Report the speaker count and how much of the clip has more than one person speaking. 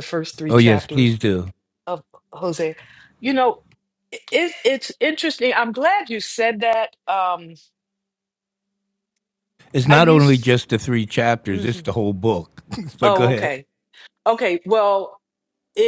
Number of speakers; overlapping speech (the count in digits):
2, about 12%